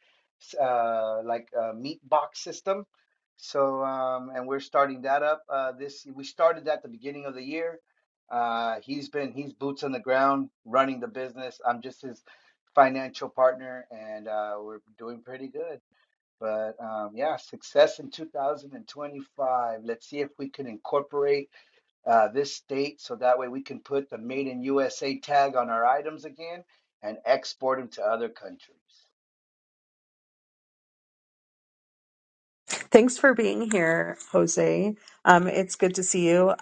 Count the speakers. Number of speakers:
two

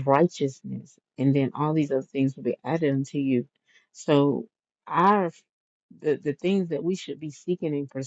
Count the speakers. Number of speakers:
one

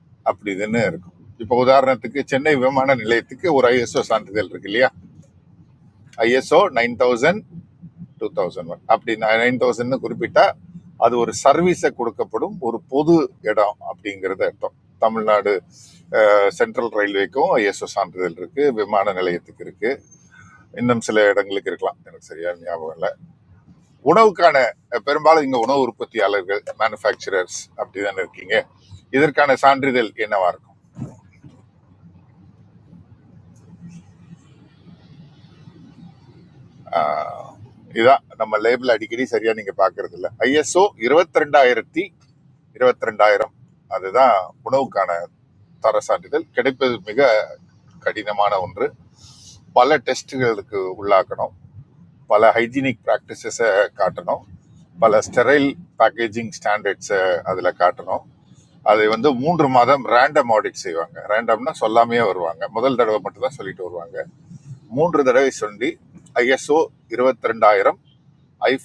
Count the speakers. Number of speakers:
one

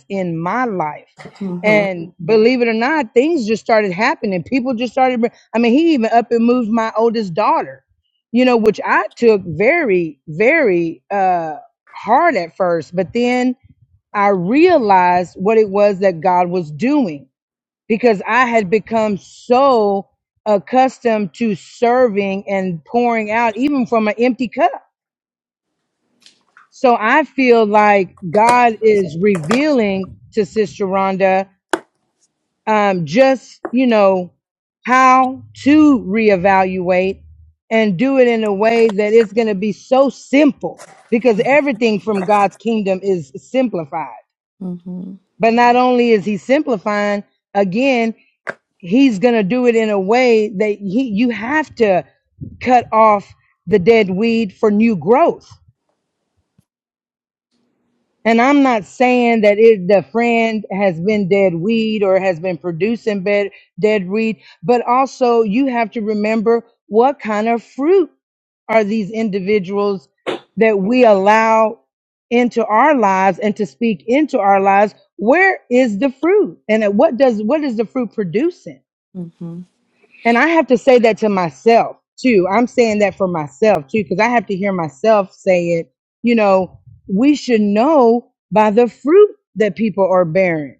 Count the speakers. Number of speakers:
two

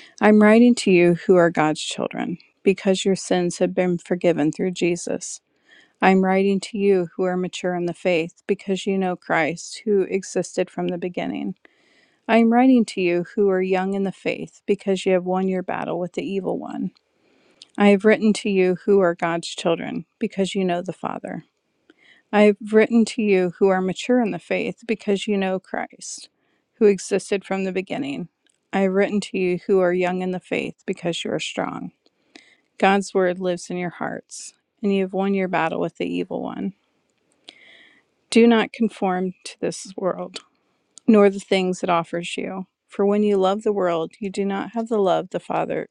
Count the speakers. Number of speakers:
one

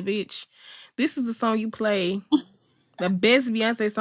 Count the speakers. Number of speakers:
one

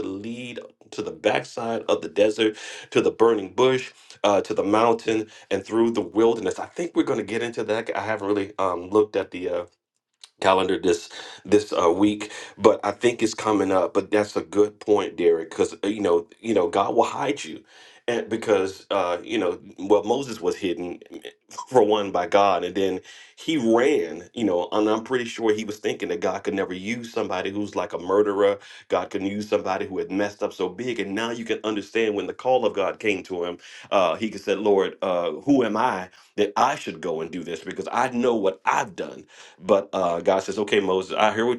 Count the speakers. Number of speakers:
one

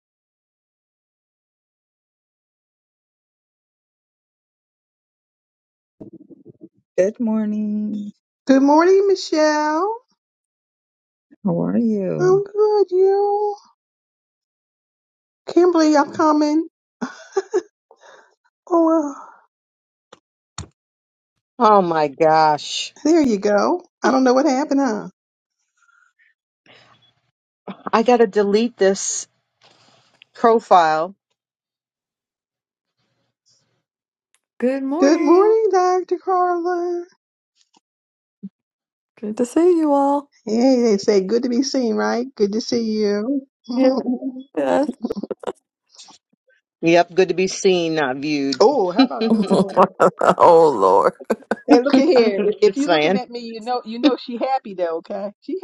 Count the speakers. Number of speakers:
four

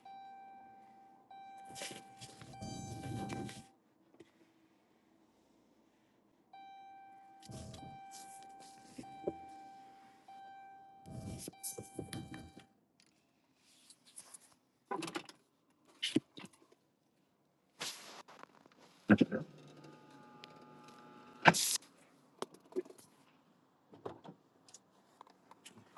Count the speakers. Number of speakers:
zero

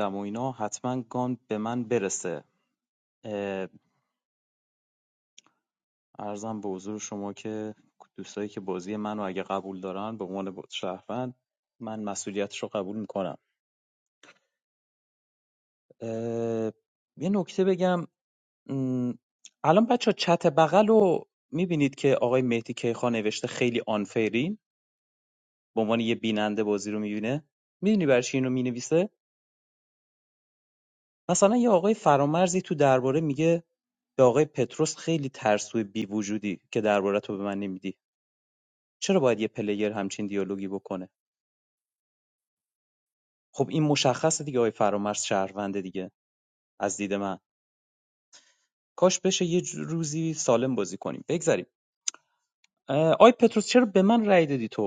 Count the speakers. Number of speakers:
one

